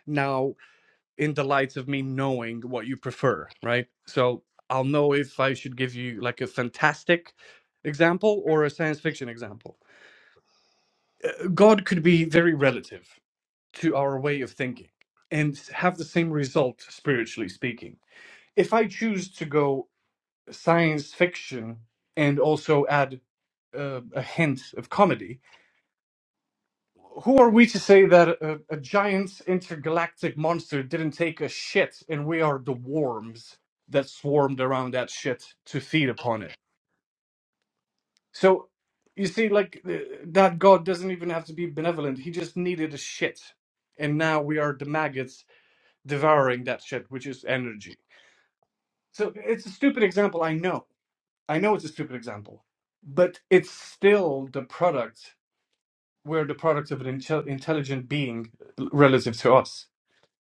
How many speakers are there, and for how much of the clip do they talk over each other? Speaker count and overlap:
1, no overlap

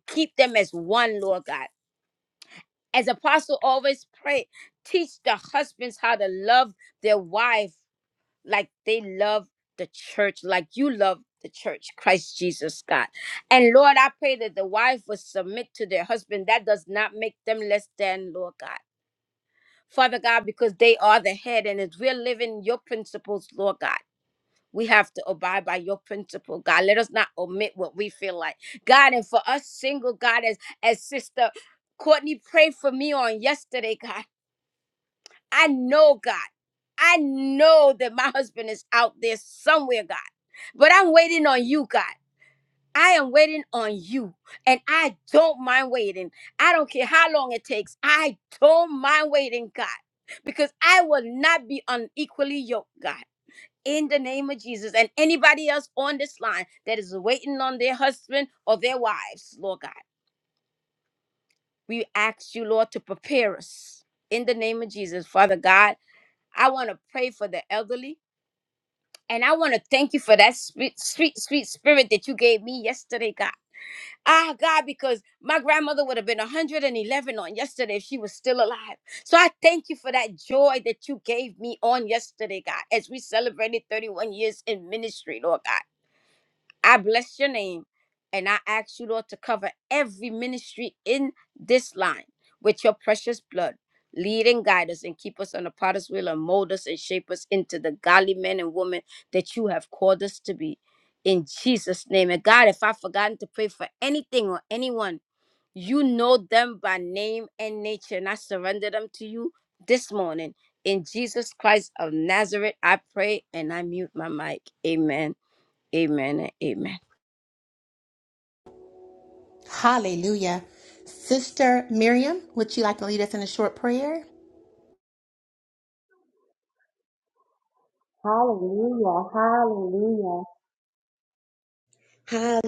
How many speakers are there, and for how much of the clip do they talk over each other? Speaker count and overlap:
3, no overlap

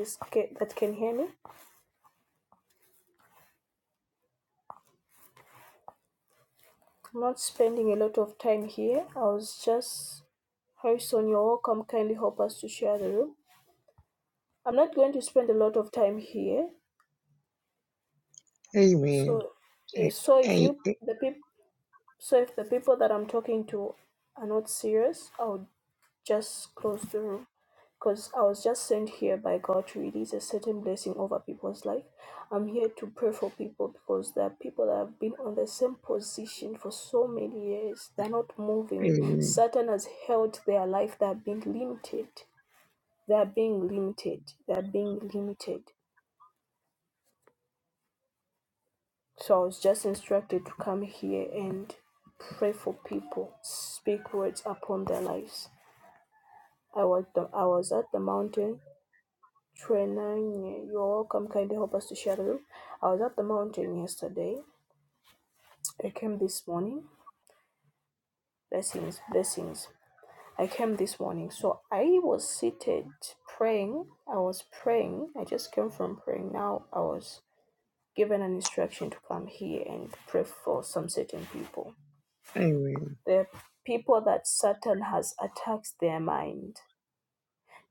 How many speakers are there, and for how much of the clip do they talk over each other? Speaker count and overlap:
2, about 2%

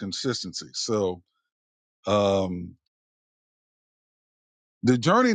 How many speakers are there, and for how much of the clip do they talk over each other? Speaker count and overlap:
1, no overlap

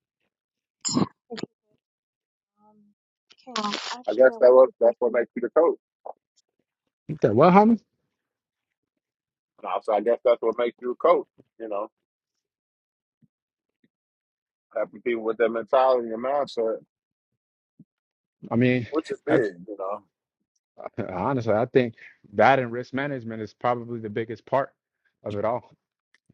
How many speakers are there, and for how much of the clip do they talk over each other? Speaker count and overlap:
3, about 5%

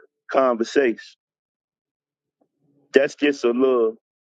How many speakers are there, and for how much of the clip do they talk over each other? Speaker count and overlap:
1, no overlap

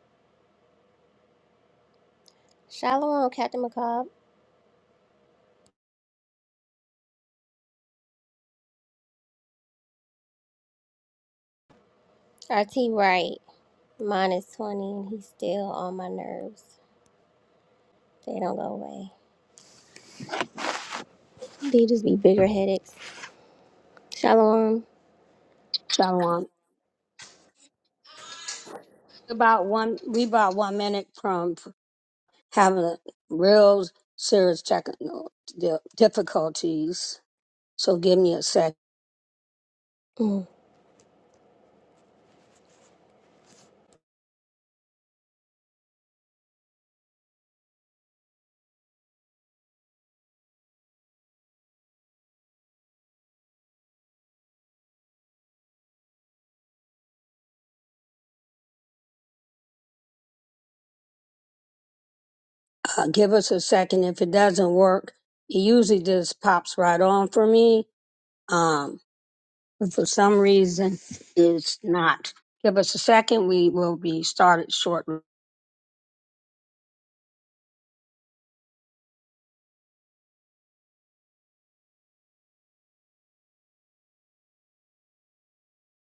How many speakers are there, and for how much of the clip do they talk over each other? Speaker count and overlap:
2, no overlap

